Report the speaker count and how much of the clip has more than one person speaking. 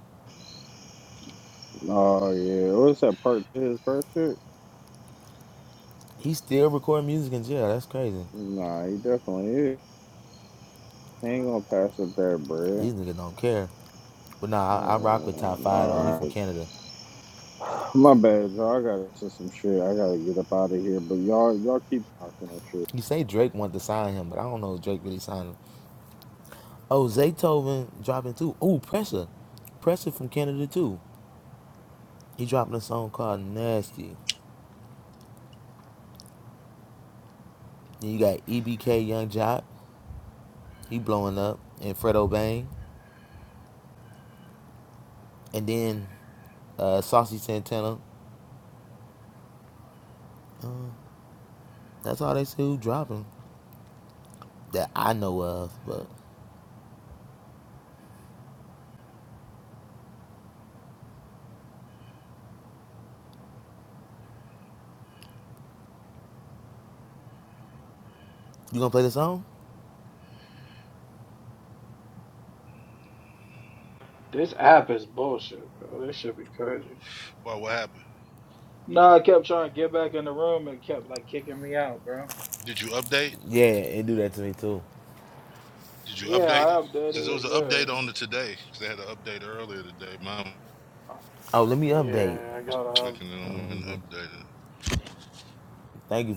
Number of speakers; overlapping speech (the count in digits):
4, about 5%